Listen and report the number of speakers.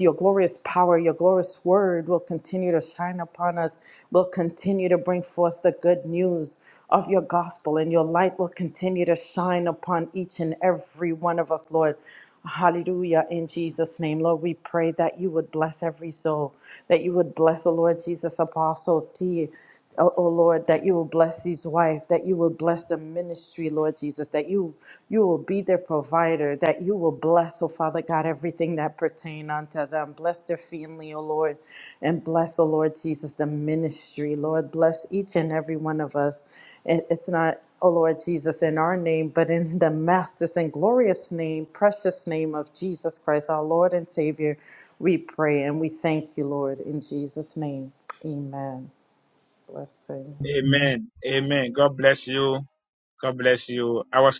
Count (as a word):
two